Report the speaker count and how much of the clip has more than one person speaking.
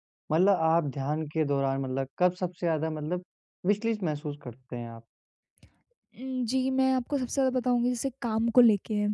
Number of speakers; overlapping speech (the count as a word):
two, no overlap